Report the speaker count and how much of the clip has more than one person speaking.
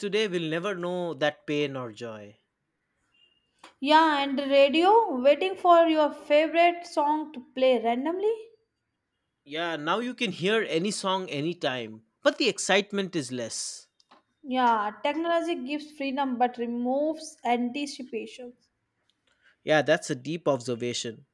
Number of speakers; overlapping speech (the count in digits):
2, no overlap